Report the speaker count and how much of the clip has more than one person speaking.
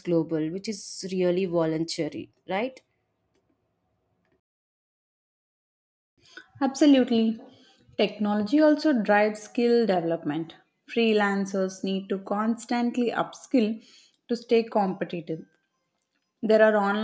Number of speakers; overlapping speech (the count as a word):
two, no overlap